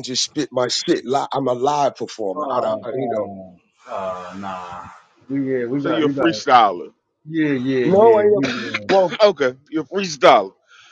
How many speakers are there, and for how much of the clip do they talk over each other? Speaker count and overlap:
3, about 19%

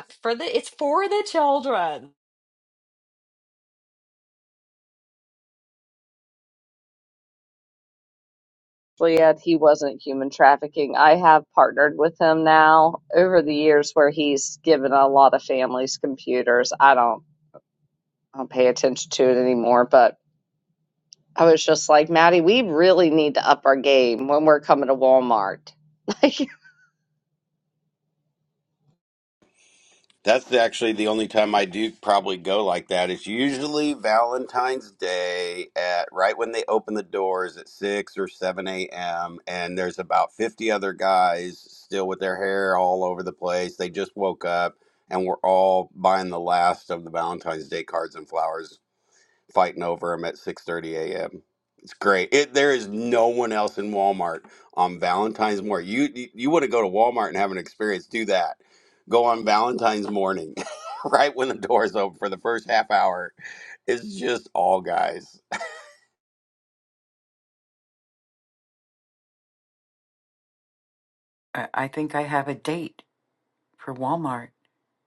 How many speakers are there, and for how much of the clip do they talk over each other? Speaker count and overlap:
4, no overlap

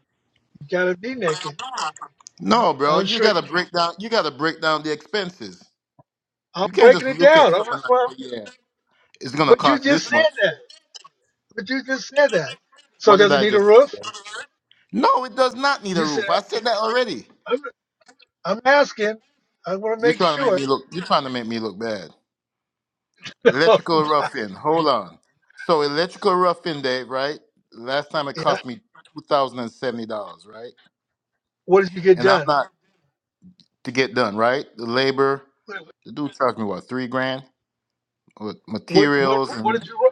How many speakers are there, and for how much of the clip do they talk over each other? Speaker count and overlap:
2, about 17%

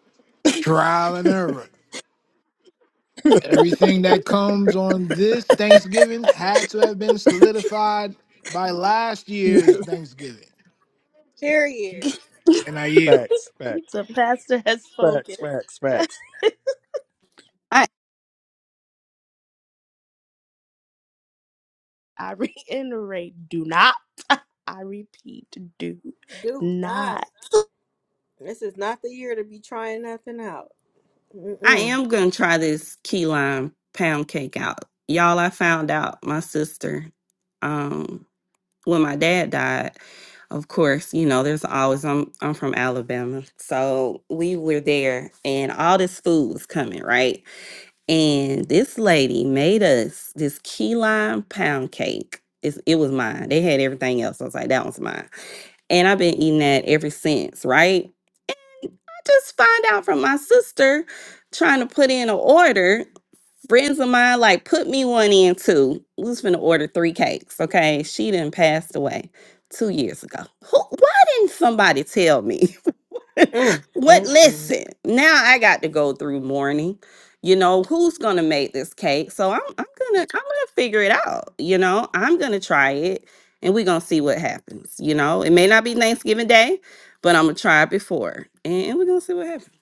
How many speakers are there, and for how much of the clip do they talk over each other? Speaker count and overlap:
5, about 3%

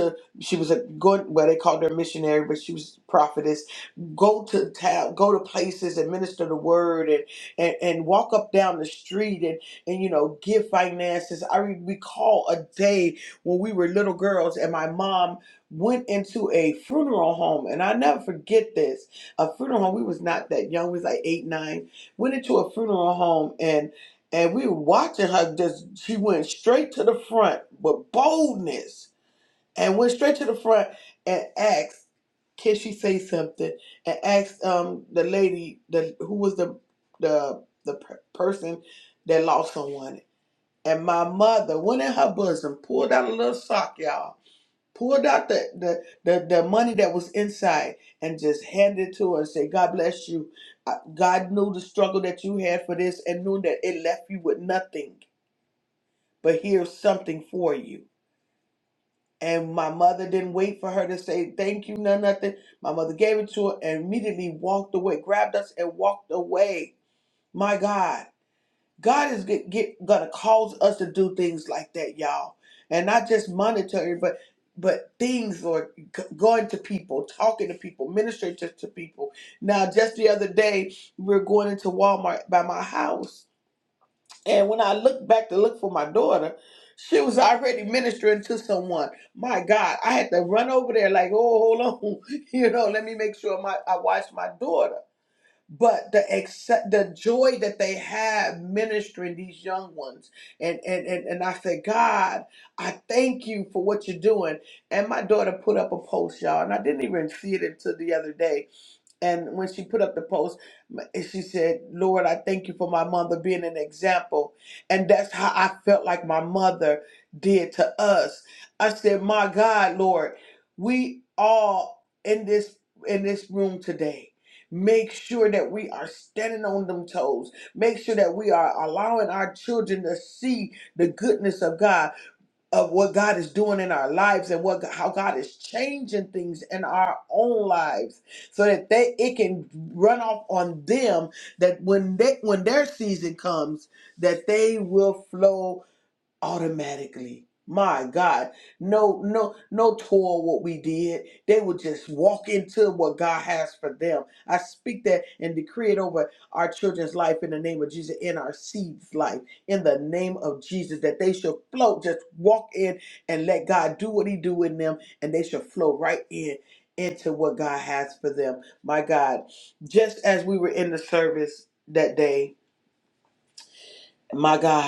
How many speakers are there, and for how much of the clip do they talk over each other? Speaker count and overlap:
1, no overlap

